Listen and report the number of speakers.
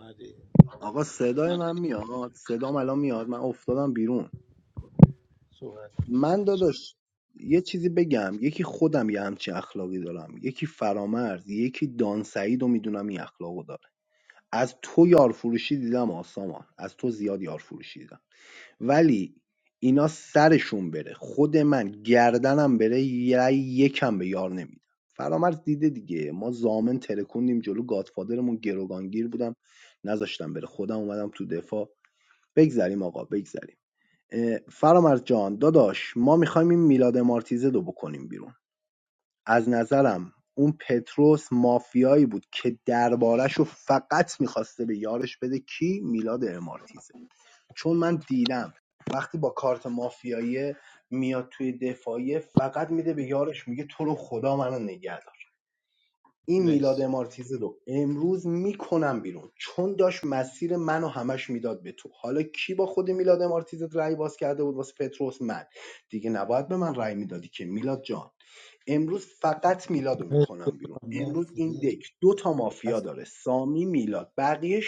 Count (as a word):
two